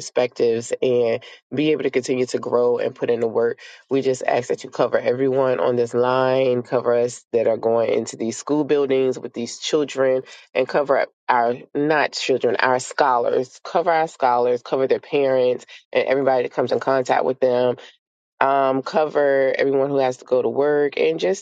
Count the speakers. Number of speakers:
1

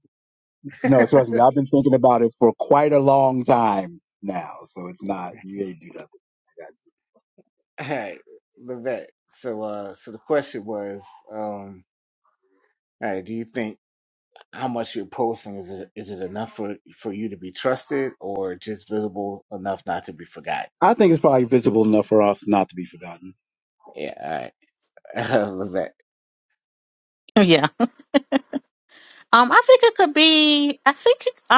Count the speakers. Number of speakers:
3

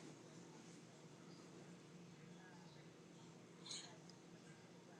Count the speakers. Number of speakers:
0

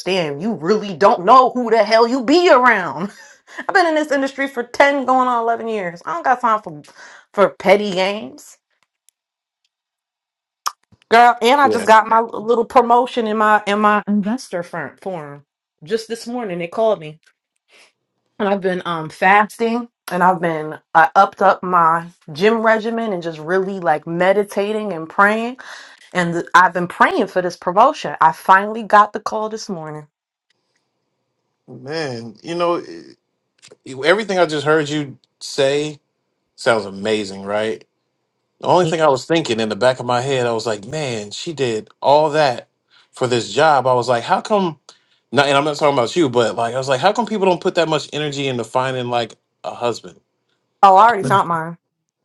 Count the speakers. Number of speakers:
2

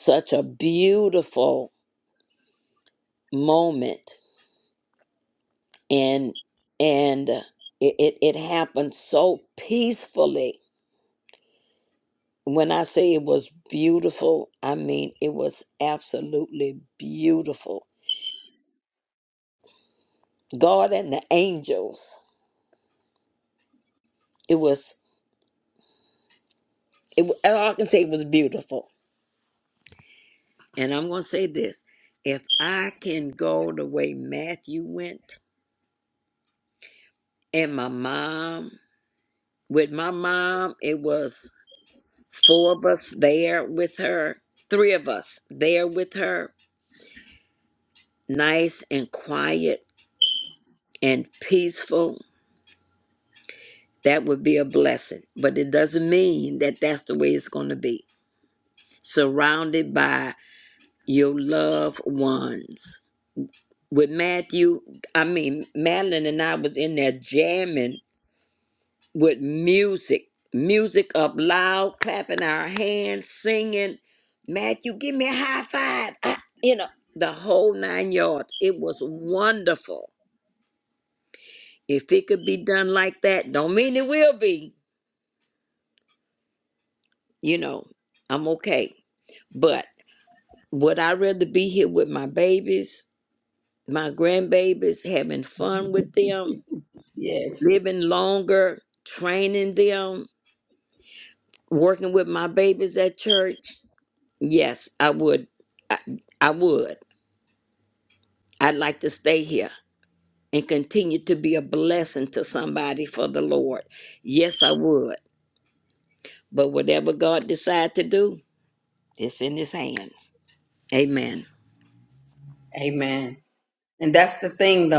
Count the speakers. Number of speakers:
2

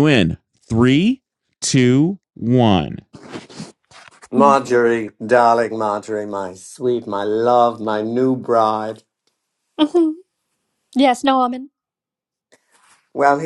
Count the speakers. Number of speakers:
3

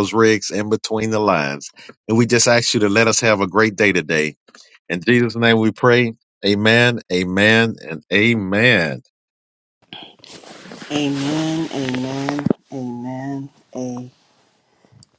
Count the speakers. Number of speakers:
2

